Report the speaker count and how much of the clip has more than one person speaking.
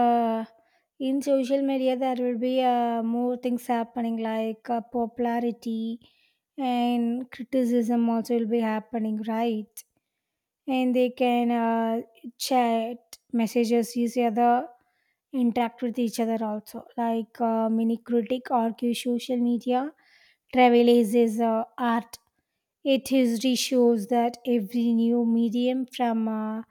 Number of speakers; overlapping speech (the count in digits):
1, no overlap